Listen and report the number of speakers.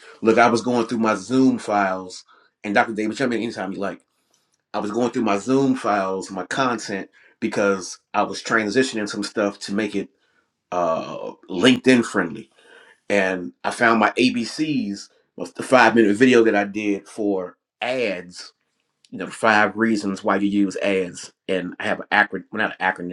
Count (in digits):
1